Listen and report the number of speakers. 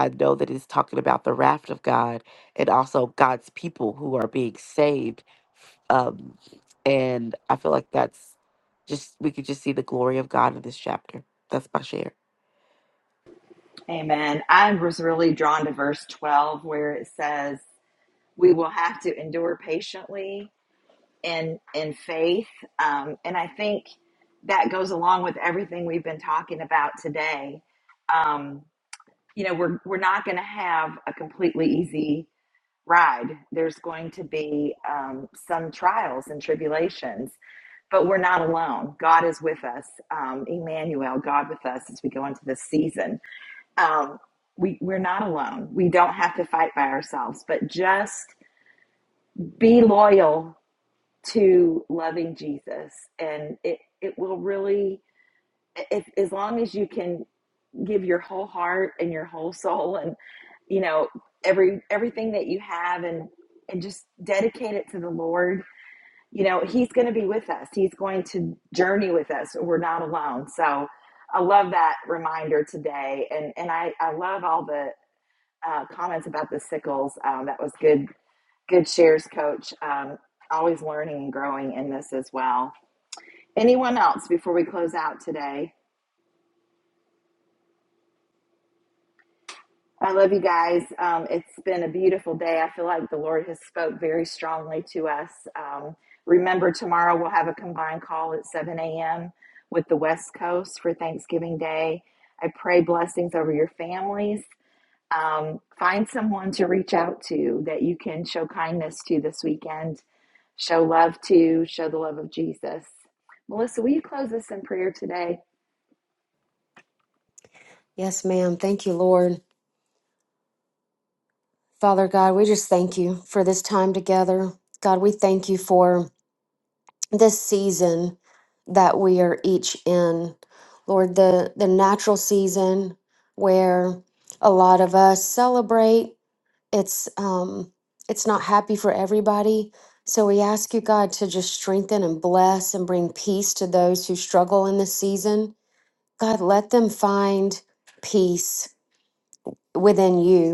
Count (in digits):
3